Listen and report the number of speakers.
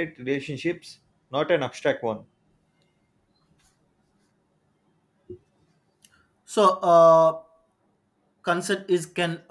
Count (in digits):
2